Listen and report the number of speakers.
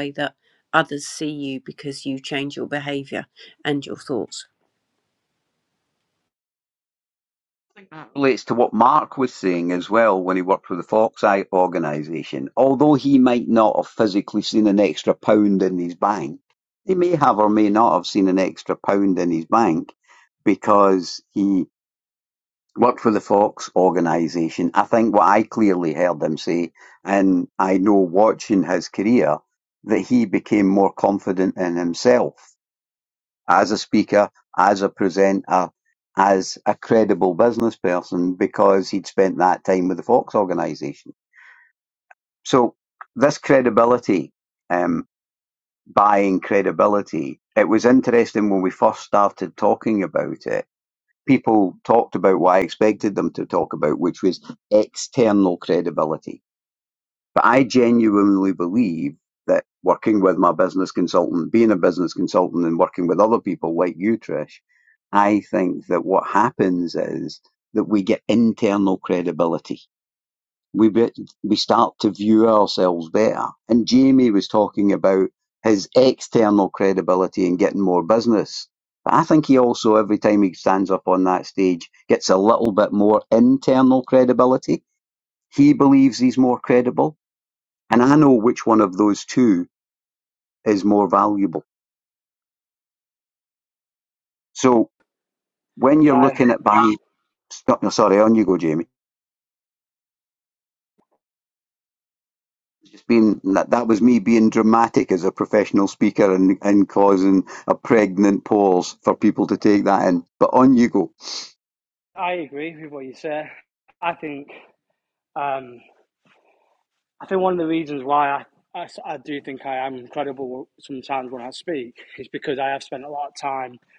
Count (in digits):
3